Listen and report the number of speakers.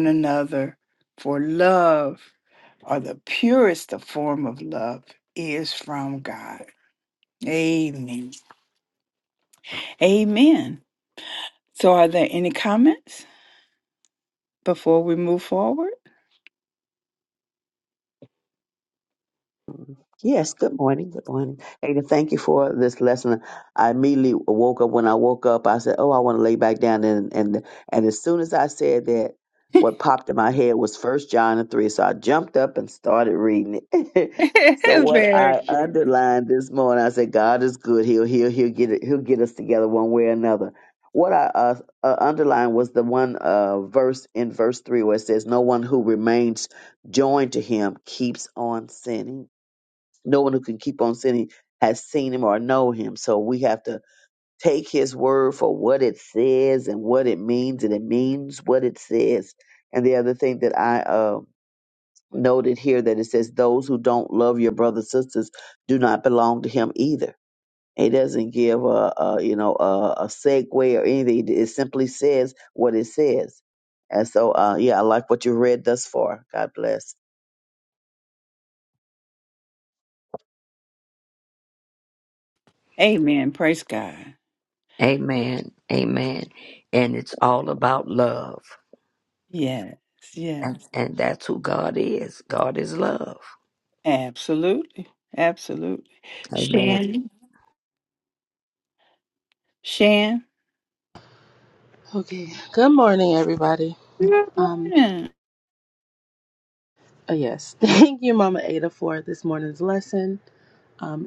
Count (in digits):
4